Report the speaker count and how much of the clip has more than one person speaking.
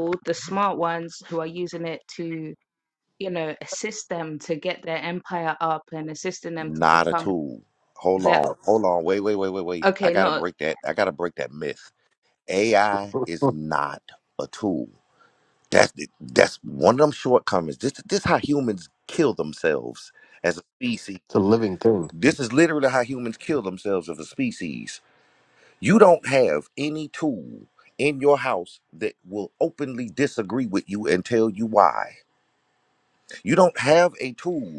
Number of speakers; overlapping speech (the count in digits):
3, about 6%